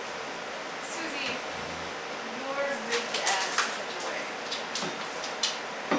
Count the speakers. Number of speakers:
one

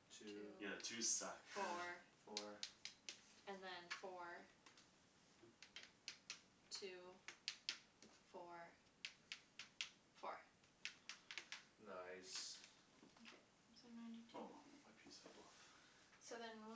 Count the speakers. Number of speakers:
four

